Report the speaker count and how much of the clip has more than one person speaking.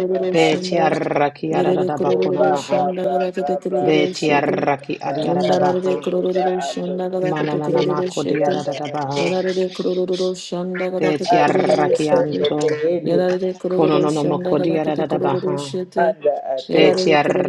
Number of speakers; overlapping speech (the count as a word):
three, about 74%